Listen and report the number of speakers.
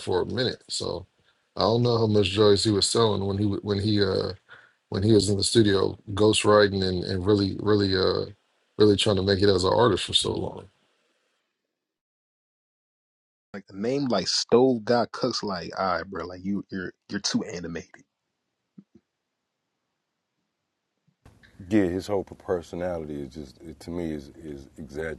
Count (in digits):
3